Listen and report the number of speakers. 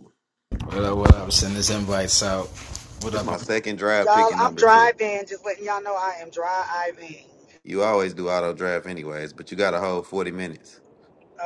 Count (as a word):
three